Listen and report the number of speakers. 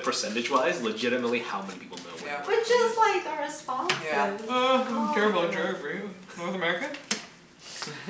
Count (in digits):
3